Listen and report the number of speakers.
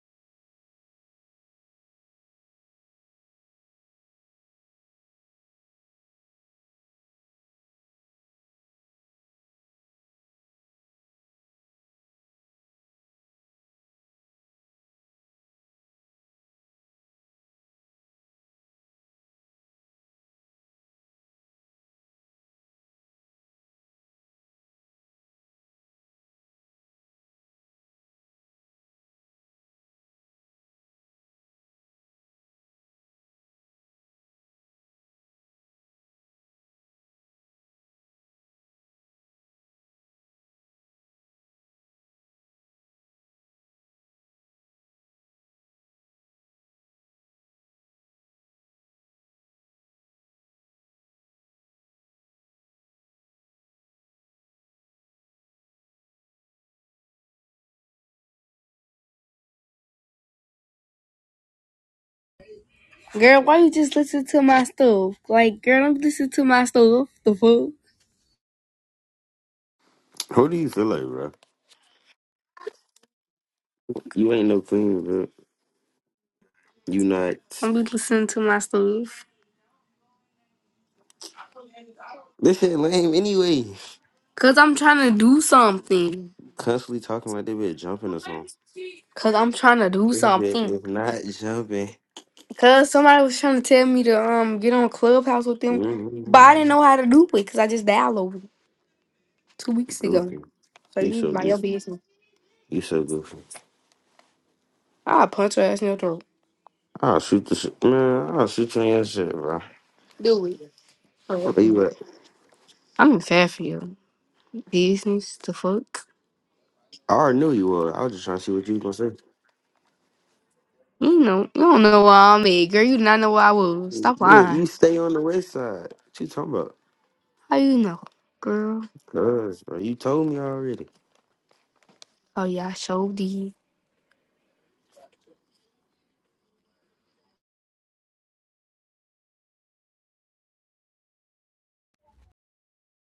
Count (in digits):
2